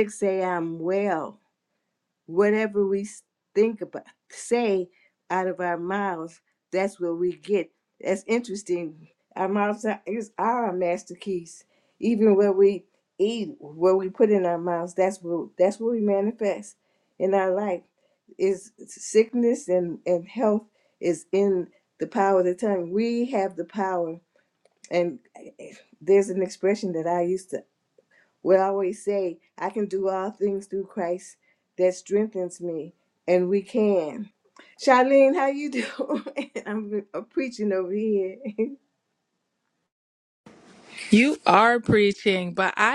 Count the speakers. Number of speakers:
two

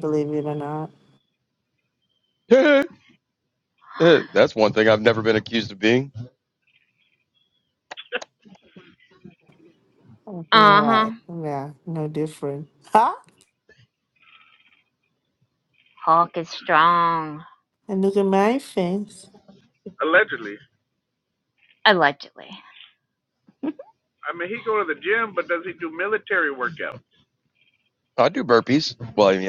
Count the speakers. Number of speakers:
four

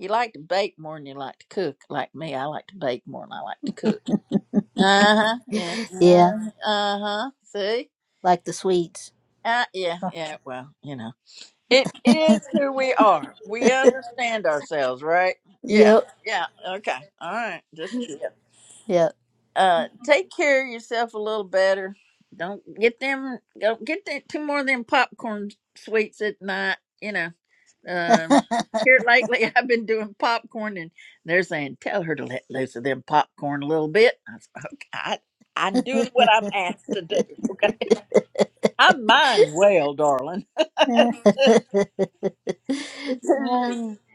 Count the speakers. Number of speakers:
two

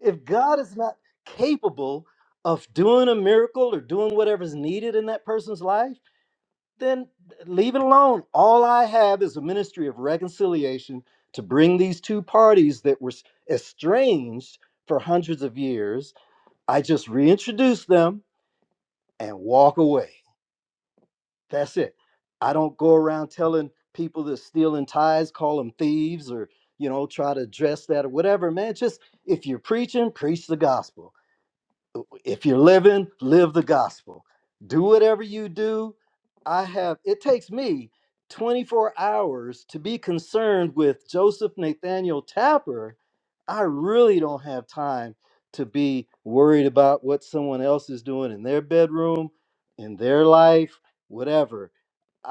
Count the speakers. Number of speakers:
one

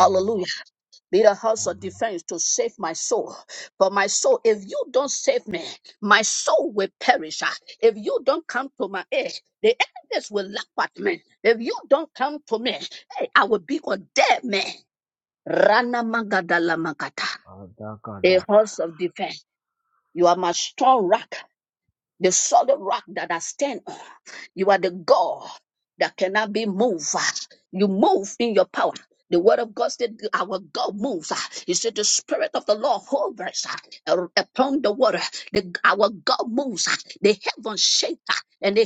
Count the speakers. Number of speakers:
two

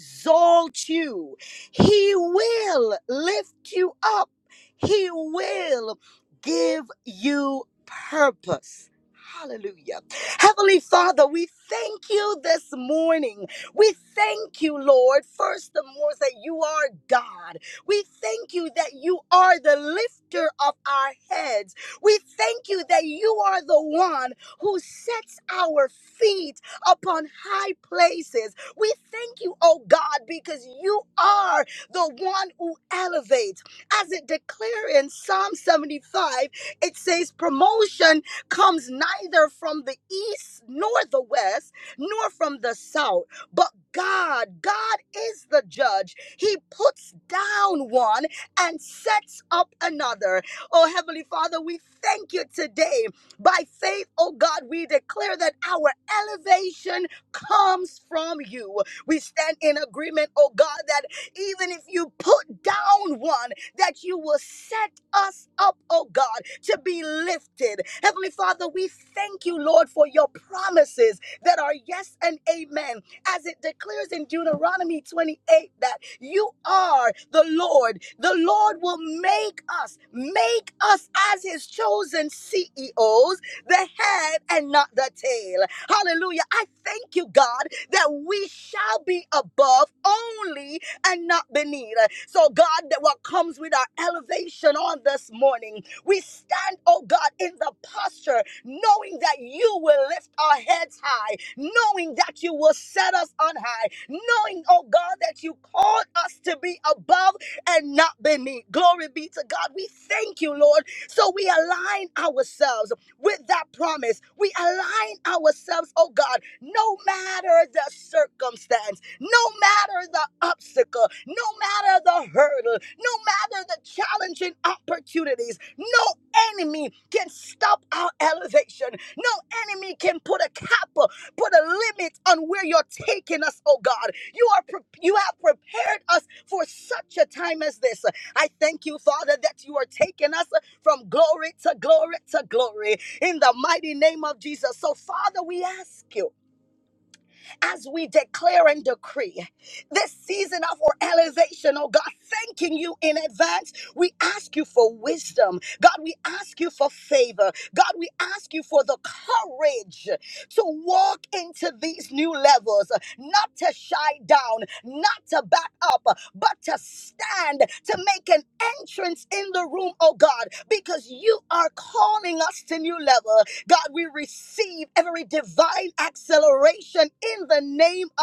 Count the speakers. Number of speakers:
one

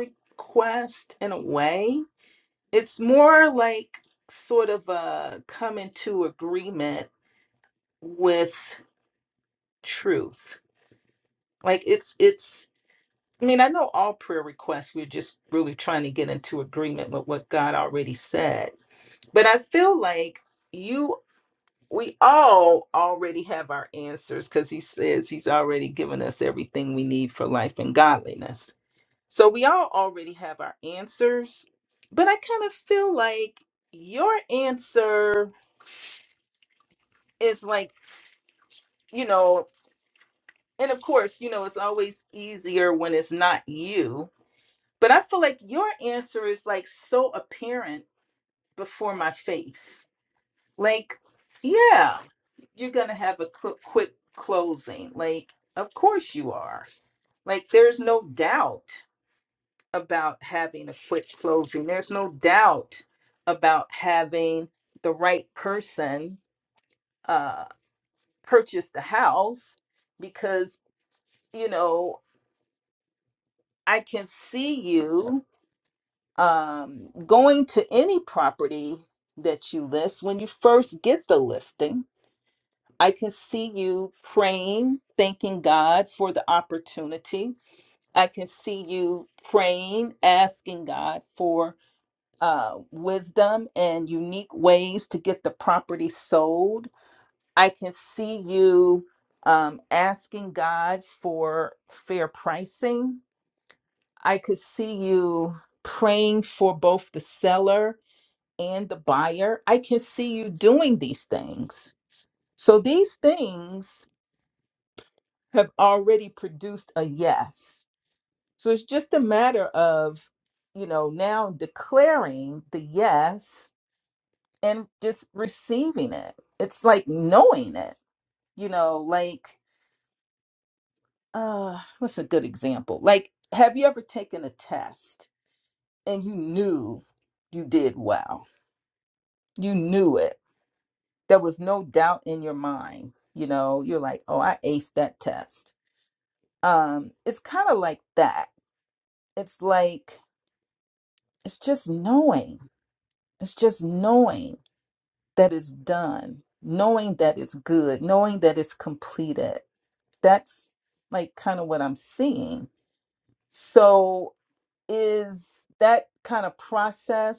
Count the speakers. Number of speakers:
one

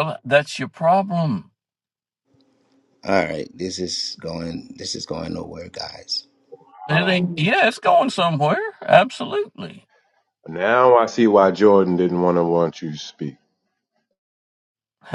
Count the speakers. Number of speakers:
three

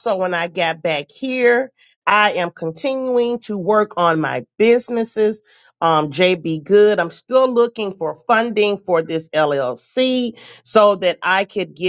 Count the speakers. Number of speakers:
one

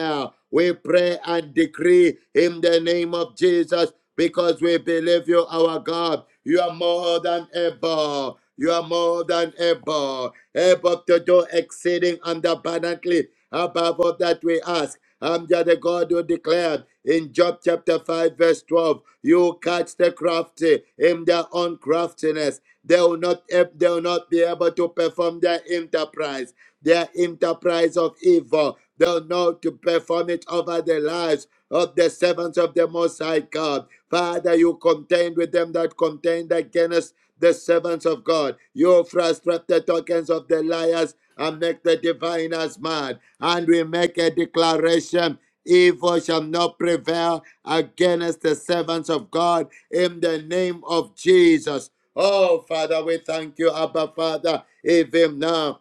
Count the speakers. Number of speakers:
one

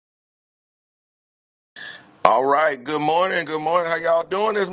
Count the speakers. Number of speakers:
one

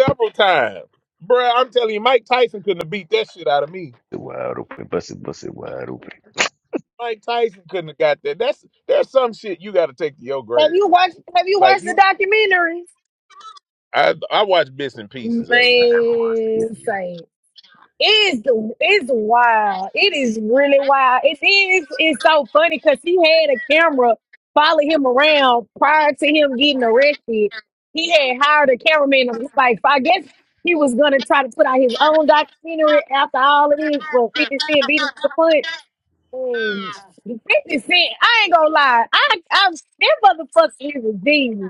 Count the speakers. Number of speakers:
three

